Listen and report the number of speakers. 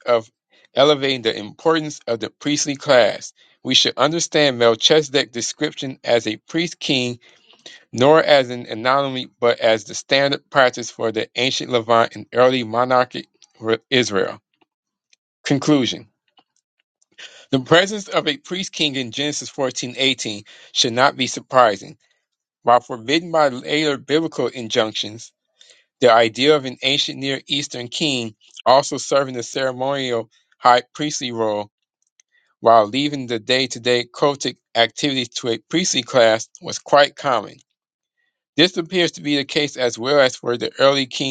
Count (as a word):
one